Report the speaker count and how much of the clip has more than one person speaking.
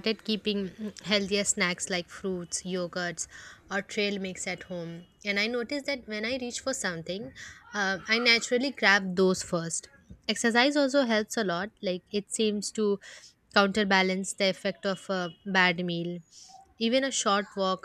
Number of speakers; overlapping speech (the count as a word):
one, no overlap